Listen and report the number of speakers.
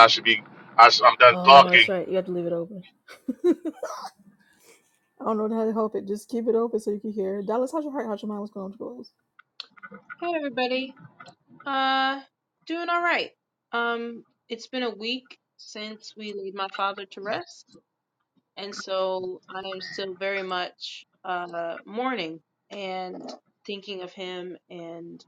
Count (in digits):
3